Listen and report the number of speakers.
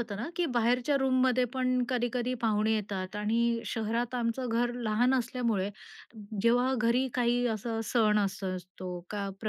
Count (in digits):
1